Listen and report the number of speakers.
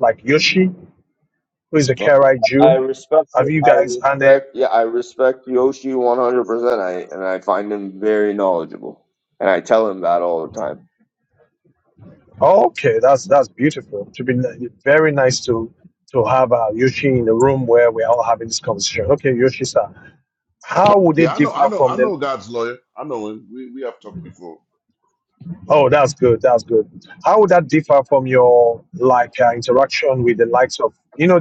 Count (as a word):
three